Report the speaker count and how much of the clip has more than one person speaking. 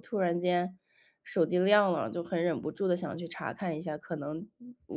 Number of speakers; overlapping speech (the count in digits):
1, no overlap